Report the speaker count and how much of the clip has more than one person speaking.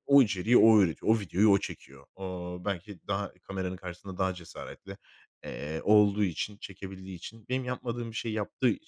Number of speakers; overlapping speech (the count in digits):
1, no overlap